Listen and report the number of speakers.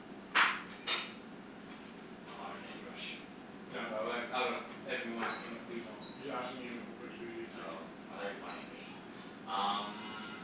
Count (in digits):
3